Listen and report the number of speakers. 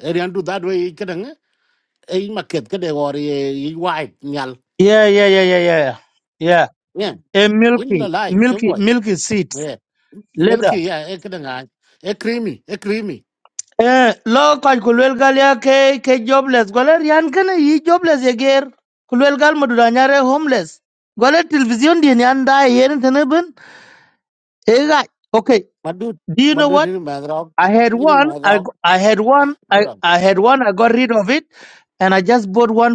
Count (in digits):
2